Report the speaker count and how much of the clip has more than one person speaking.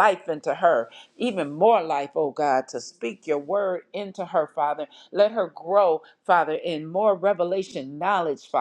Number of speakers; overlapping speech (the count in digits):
1, no overlap